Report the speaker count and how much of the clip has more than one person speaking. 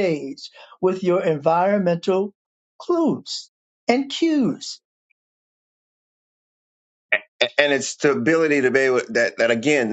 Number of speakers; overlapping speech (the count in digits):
2, no overlap